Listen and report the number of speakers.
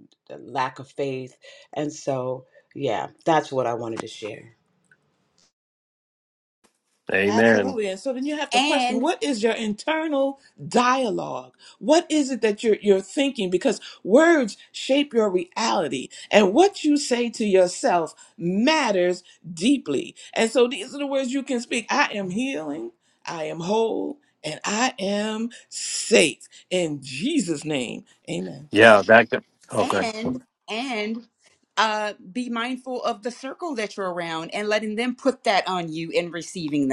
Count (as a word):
four